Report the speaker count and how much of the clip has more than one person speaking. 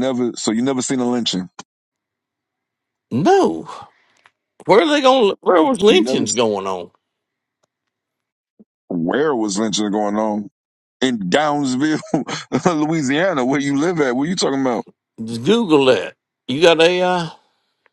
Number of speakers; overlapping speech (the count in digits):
2, about 2%